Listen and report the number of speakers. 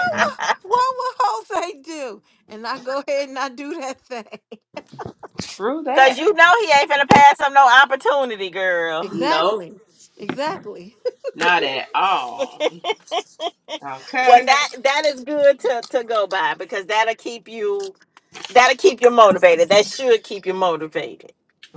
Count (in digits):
3